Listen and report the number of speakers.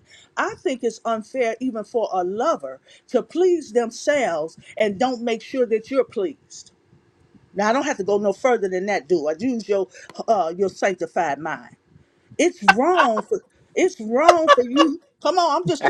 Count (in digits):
1